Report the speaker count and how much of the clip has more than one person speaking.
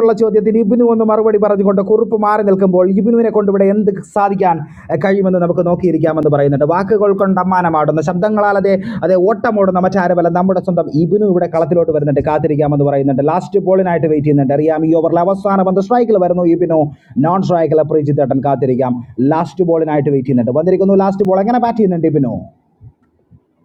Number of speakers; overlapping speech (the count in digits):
1, no overlap